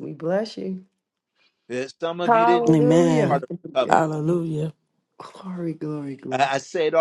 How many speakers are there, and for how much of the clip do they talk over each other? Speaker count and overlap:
3, about 23%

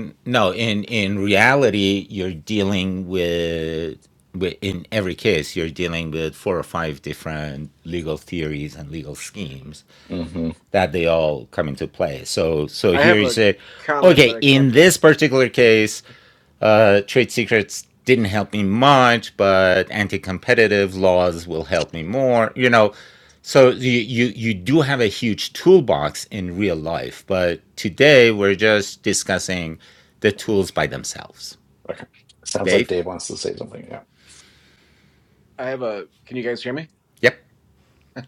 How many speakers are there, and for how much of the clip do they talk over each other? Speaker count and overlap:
3, about 3%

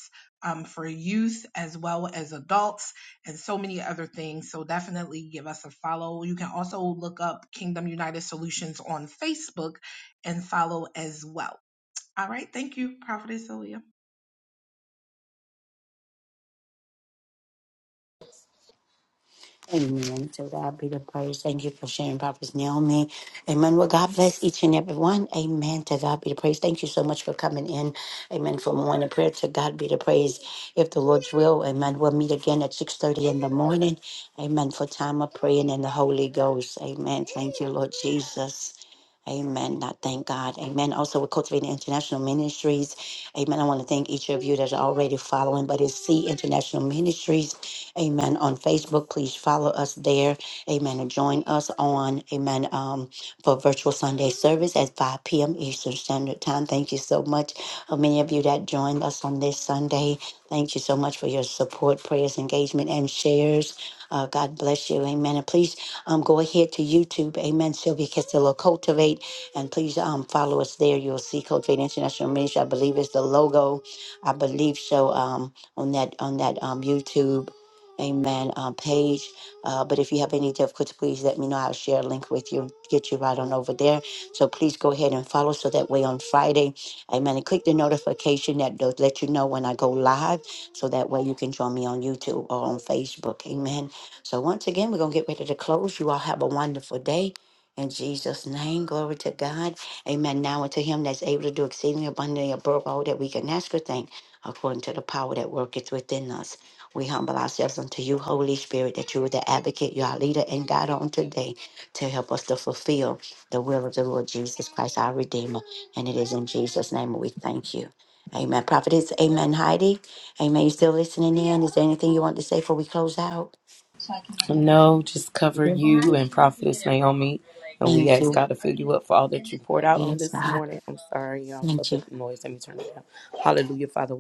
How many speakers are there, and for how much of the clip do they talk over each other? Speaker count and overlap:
3, about 1%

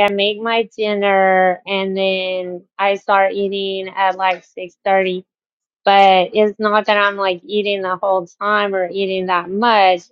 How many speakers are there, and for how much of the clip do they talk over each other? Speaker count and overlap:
1, no overlap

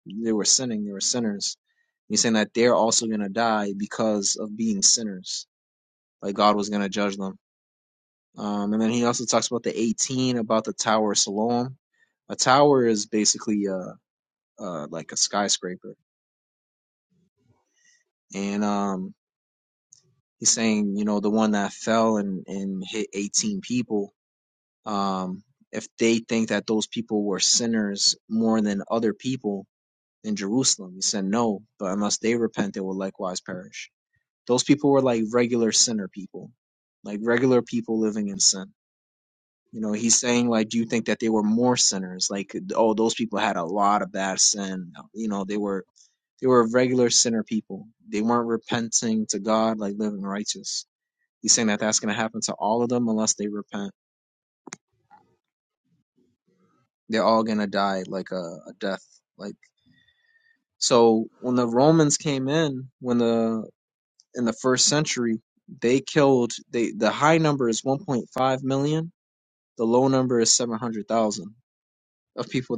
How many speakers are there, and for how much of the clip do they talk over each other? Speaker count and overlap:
1, no overlap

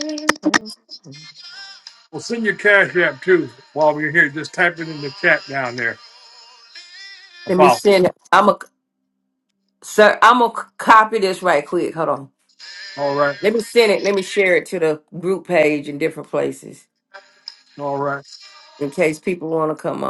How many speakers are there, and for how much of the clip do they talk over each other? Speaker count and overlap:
2, about 1%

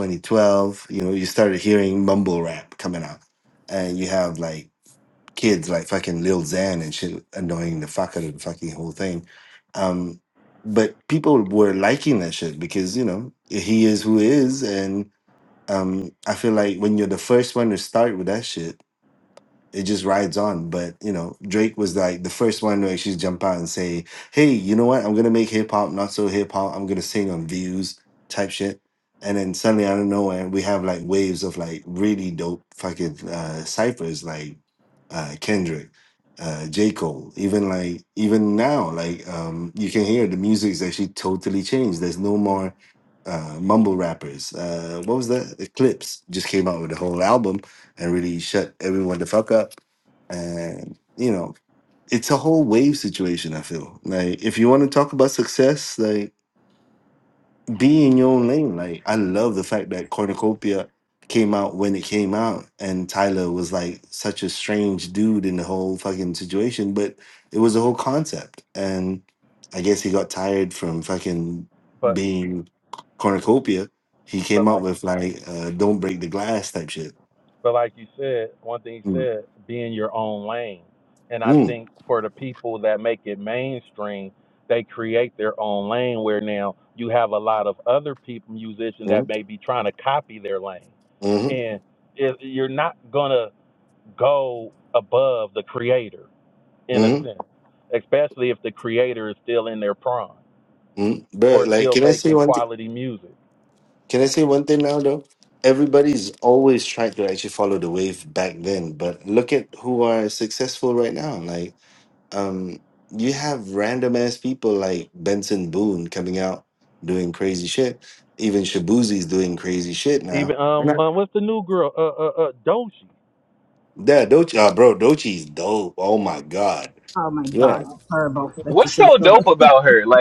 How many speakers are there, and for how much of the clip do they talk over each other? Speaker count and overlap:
4, about 3%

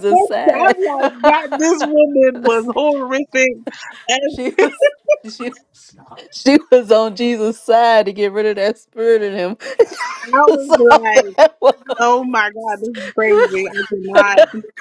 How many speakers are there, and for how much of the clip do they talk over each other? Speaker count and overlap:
2, about 9%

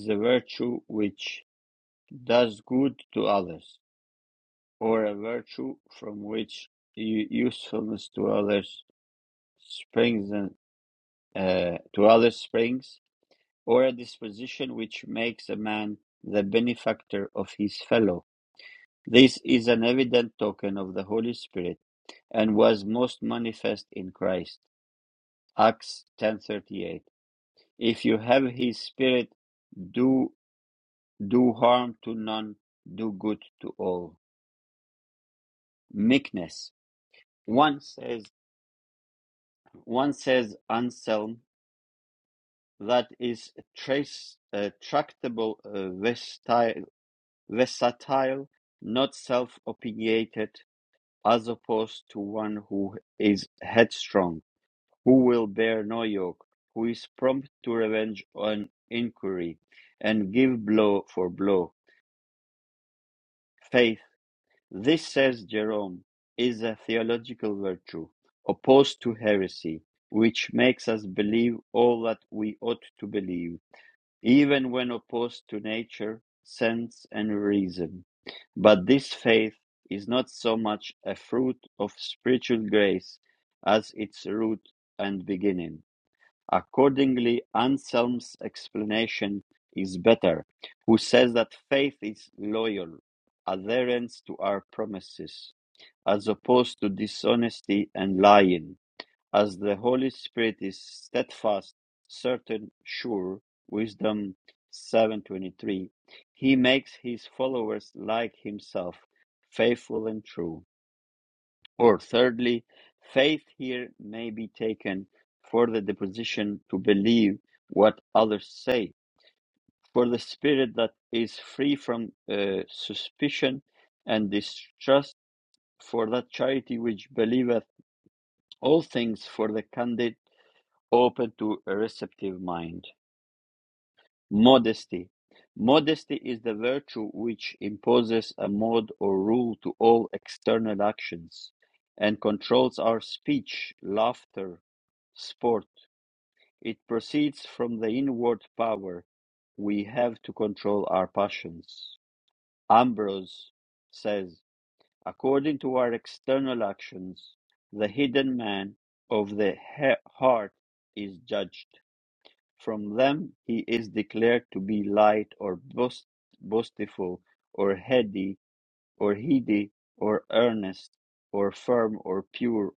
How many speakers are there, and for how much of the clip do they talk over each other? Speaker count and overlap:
1, no overlap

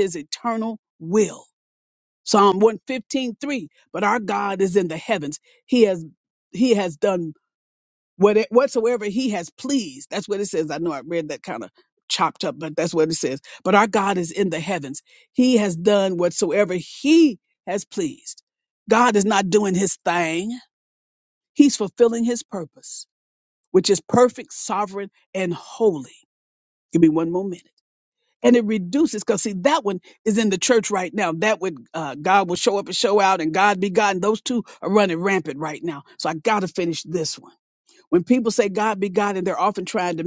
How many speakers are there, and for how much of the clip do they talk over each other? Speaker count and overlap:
1, no overlap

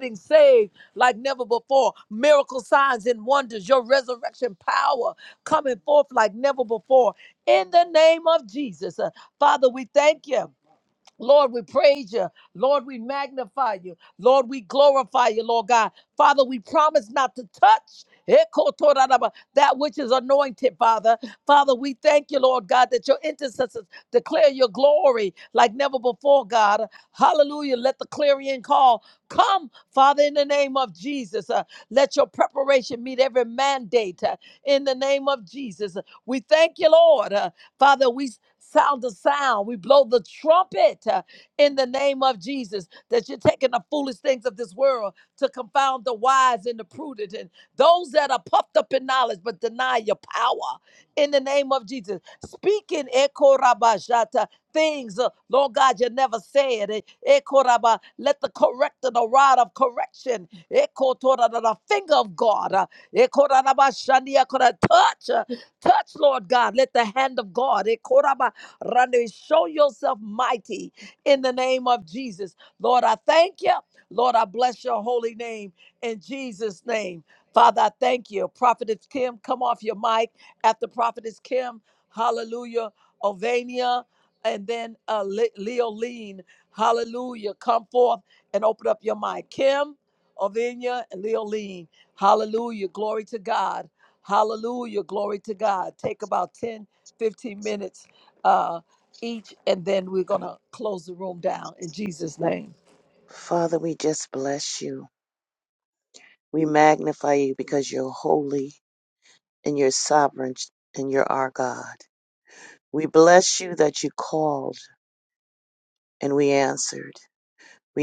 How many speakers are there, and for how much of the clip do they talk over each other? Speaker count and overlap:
2, no overlap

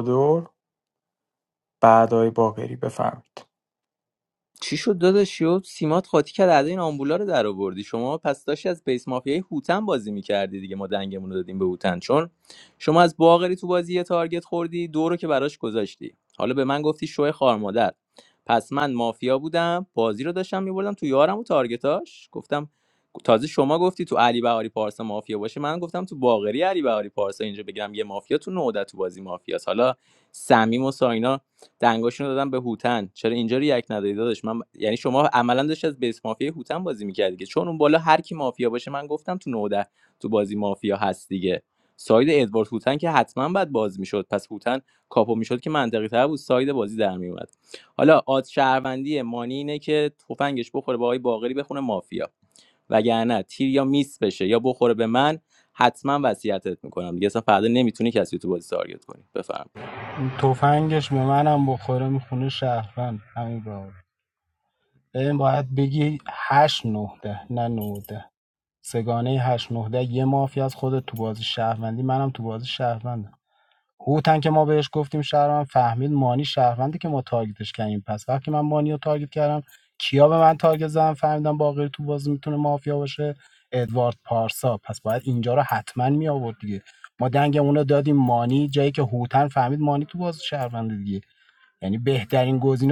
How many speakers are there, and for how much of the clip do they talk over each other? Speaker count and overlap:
3, no overlap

